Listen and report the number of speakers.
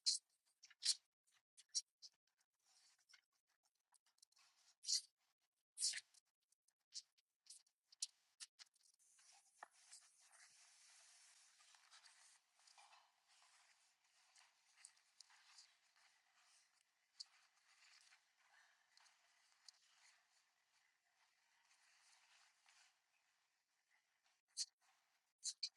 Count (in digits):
0